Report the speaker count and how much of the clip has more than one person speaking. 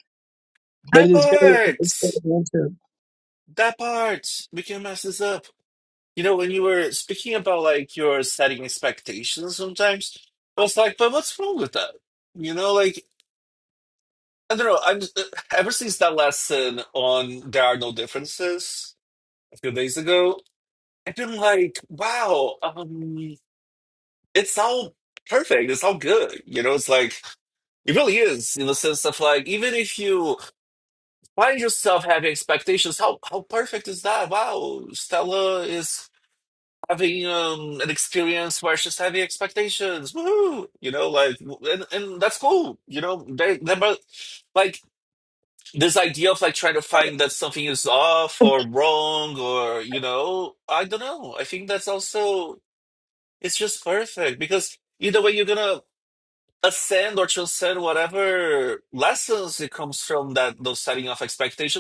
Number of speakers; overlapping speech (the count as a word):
two, about 1%